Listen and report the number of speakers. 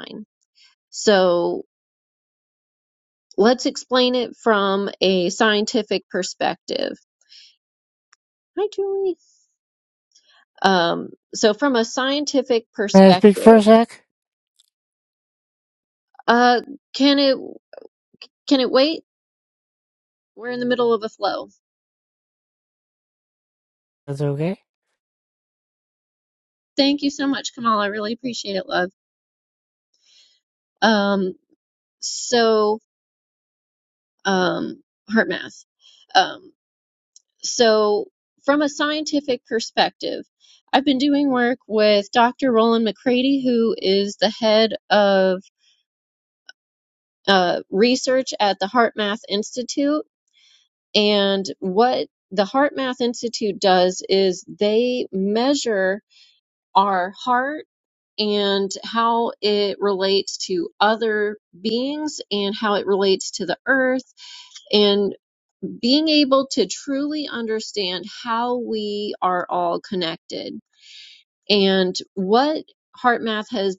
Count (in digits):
2